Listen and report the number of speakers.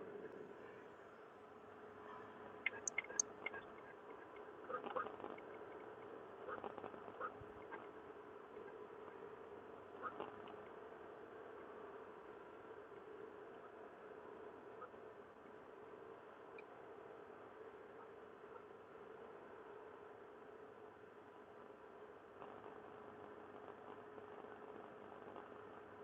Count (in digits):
0